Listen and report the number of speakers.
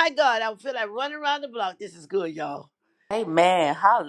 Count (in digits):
2